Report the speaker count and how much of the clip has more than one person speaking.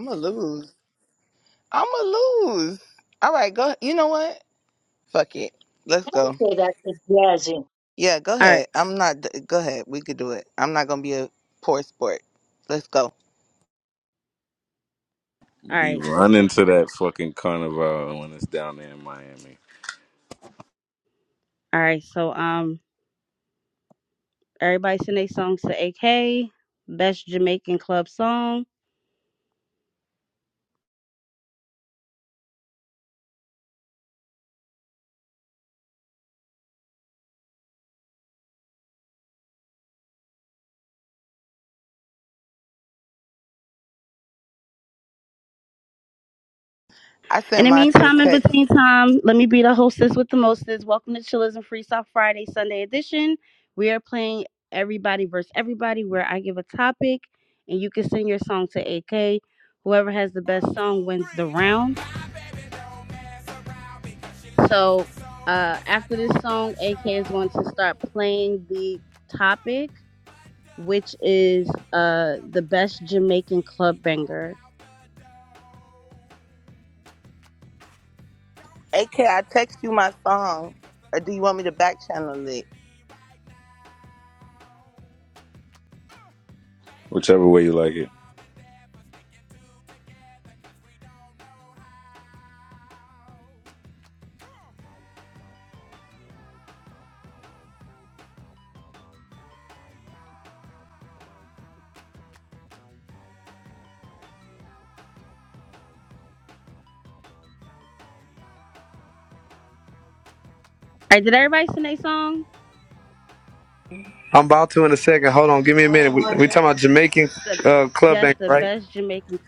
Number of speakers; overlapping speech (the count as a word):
five, about 2%